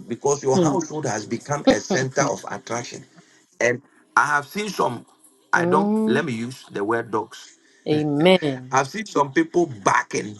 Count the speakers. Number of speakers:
two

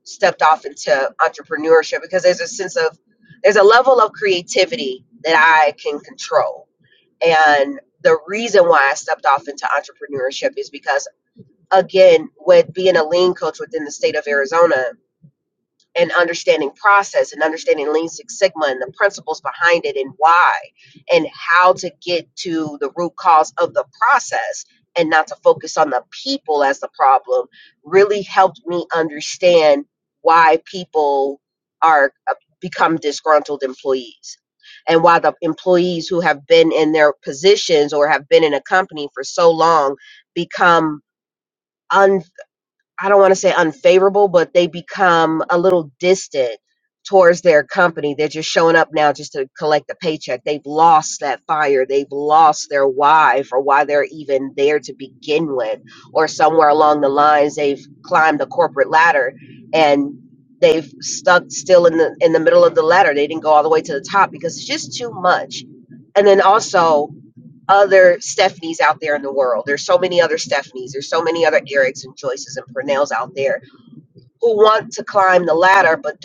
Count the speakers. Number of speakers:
one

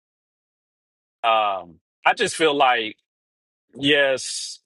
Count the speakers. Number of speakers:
one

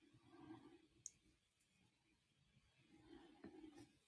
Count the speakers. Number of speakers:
zero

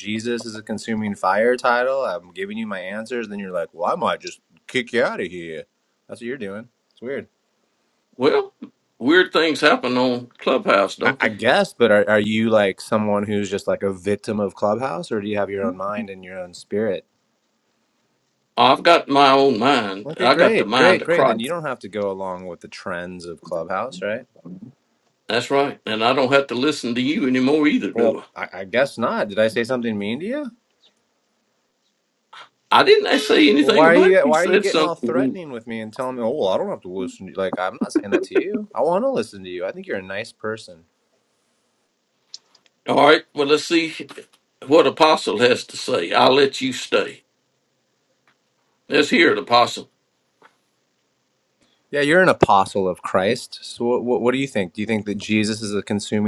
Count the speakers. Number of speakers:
two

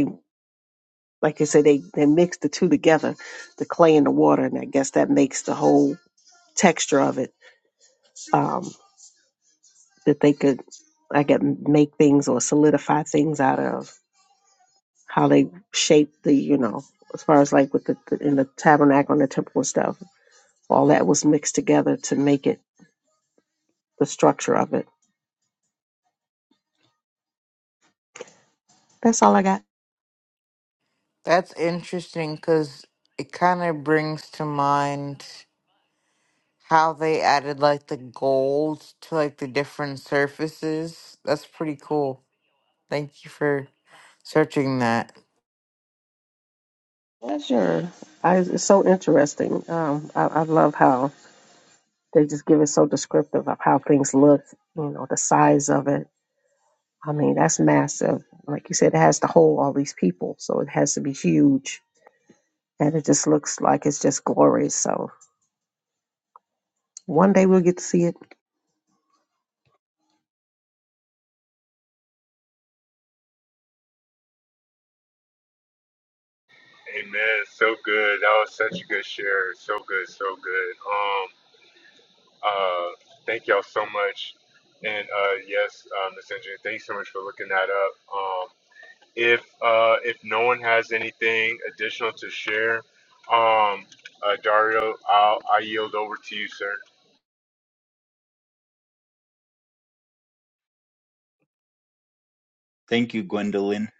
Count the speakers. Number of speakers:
four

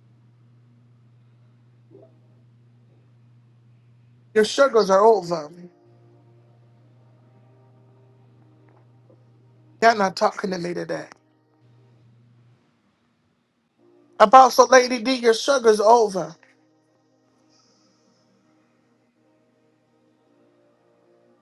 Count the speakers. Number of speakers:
one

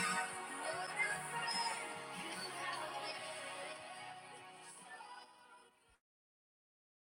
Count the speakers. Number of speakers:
zero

